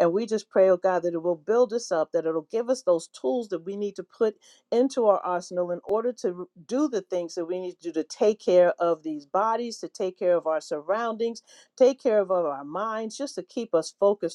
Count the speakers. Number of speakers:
1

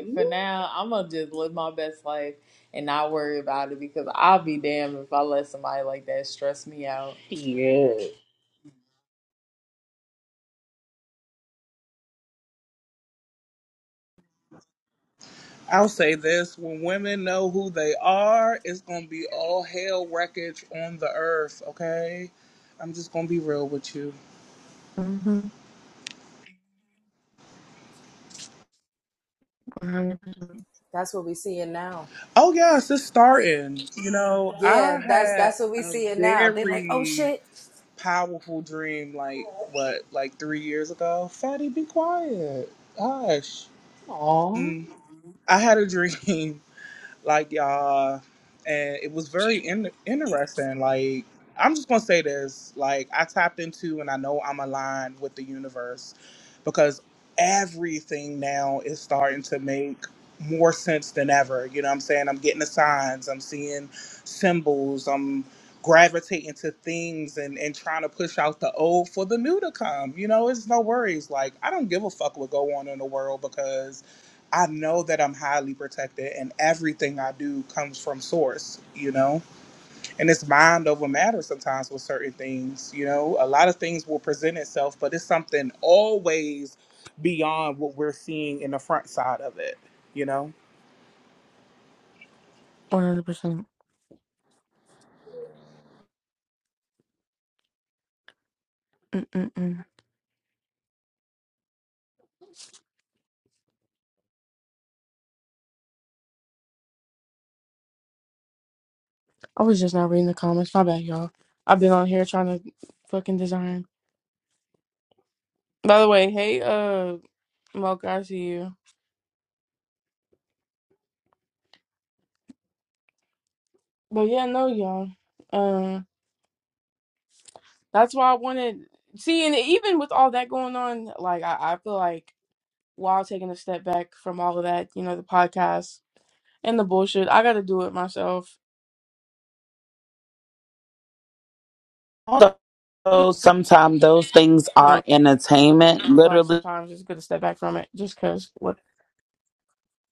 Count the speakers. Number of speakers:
6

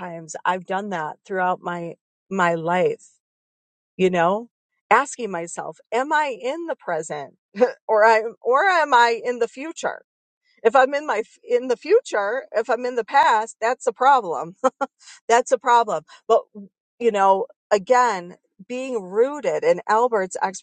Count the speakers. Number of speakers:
1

